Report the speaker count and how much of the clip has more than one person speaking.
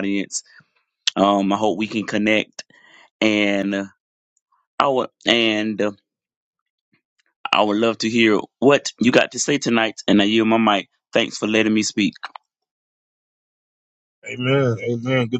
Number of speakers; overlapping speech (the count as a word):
two, no overlap